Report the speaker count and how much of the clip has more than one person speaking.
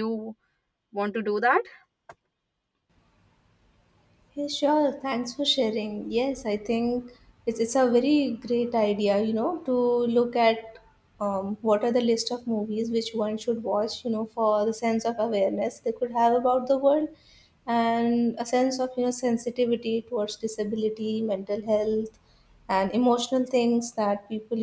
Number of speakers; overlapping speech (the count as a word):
two, no overlap